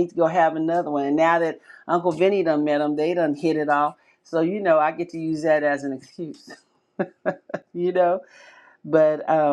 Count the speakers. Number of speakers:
1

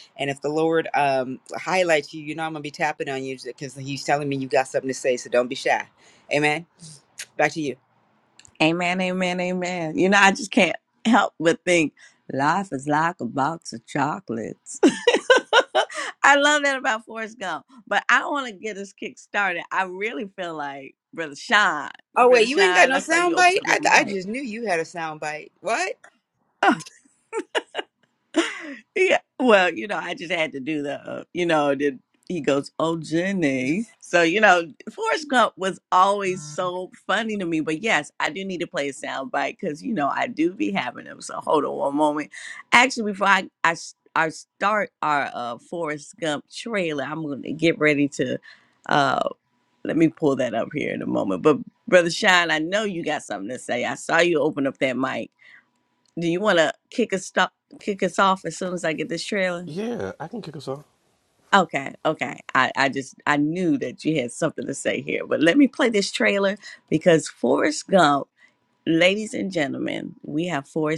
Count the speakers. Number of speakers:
3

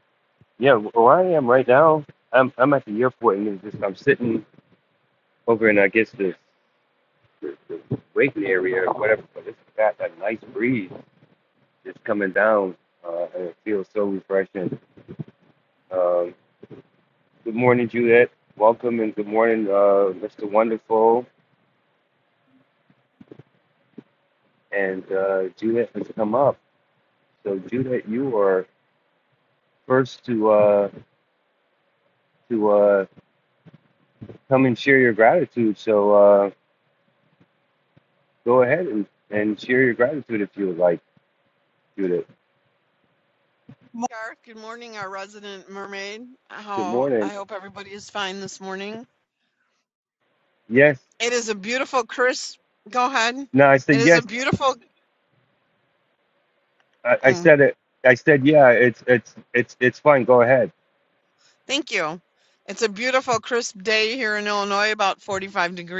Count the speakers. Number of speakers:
2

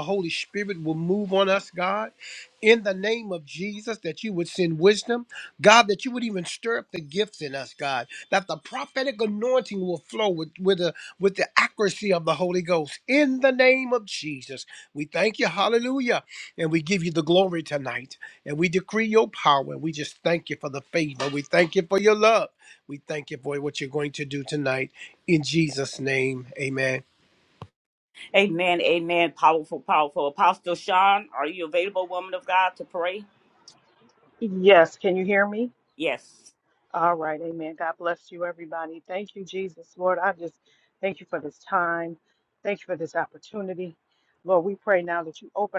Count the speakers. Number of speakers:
3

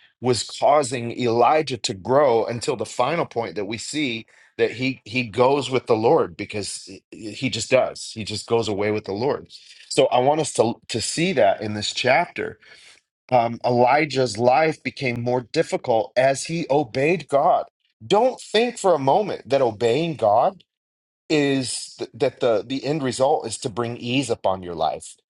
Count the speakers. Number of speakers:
1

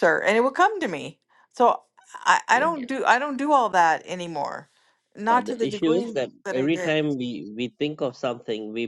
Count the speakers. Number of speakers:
2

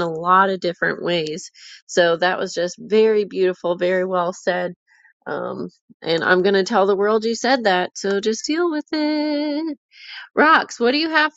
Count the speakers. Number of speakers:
1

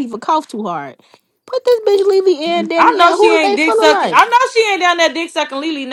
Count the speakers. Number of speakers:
2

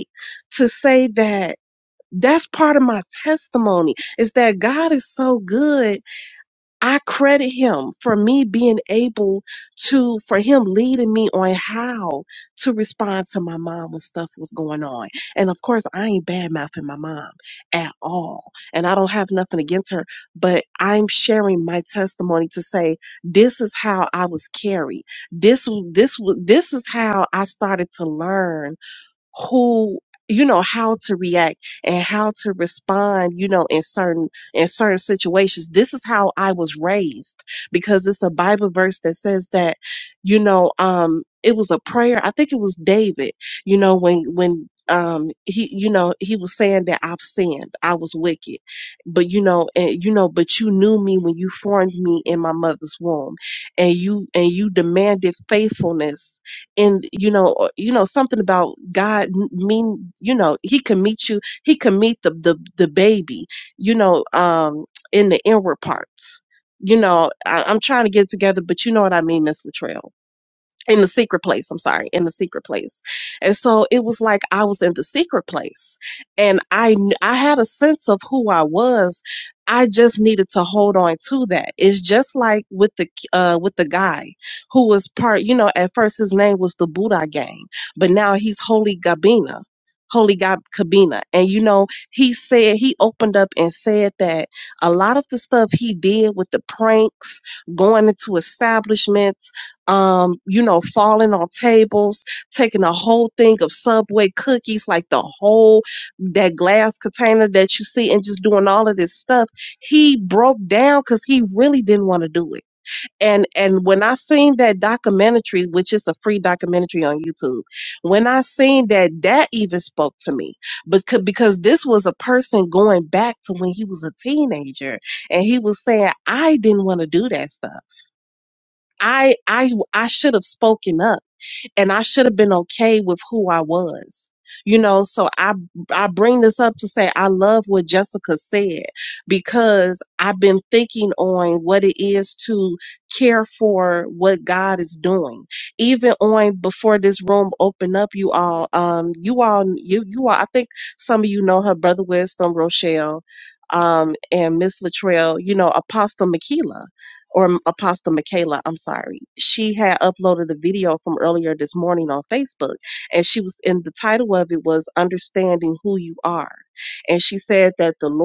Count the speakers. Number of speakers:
1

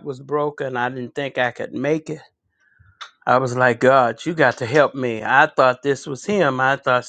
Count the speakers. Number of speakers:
1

